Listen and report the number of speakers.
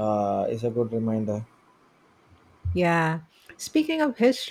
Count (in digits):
2